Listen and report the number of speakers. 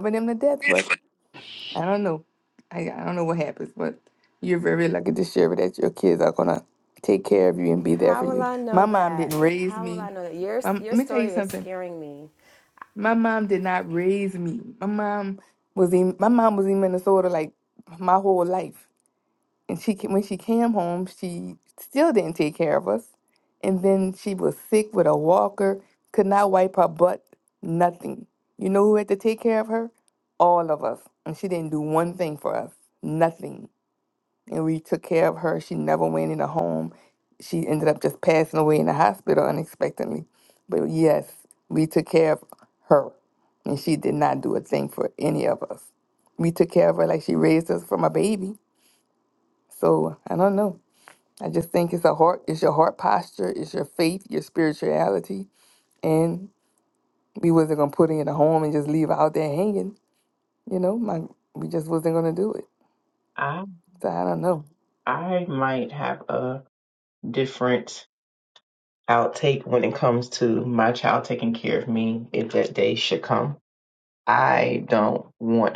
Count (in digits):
3